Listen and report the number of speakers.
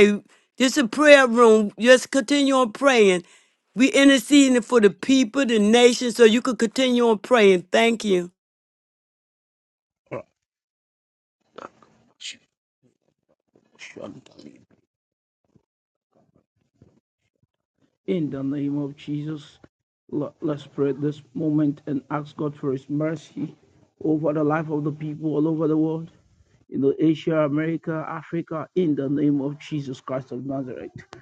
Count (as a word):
two